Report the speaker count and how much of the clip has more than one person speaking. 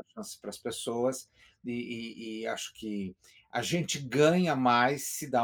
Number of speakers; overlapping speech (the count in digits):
1, no overlap